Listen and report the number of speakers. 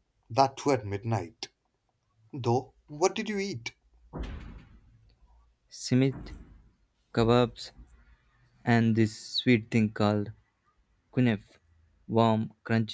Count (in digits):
2